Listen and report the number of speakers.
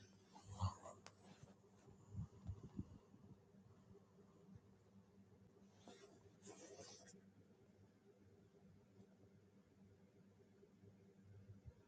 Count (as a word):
zero